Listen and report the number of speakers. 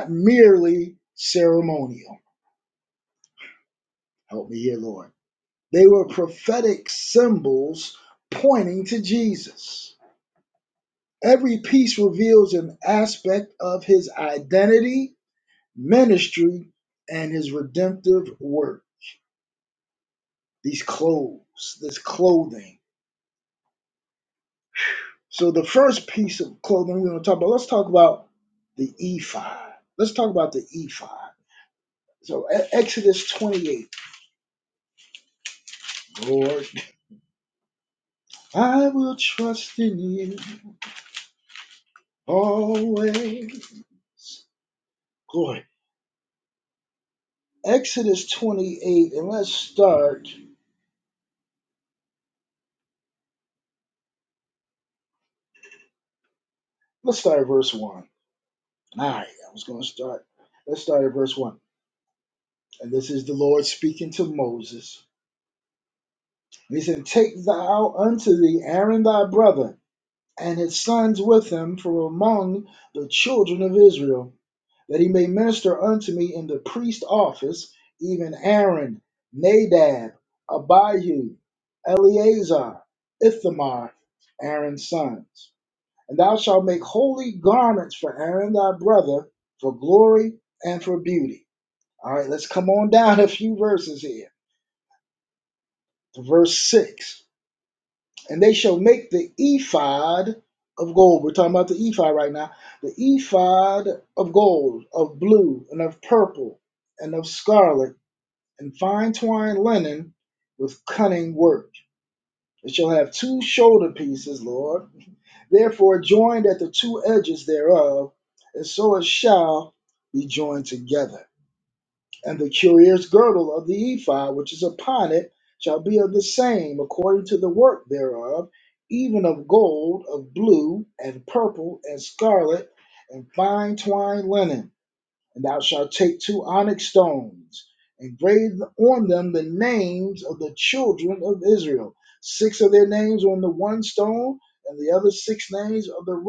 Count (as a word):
one